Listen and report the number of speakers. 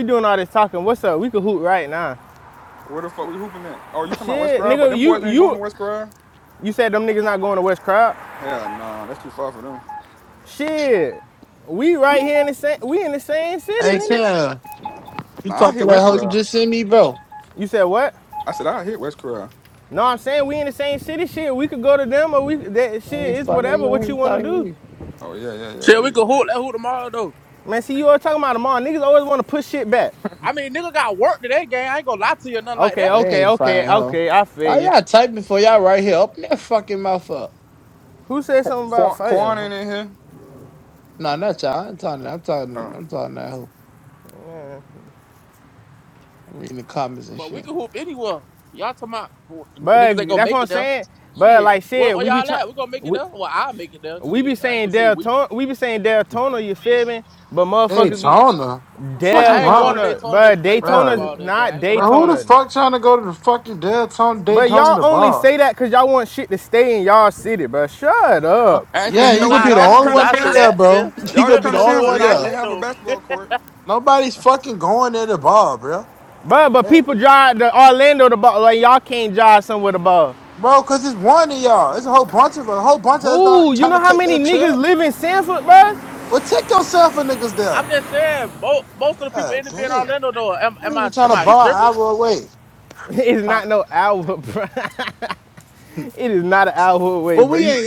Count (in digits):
4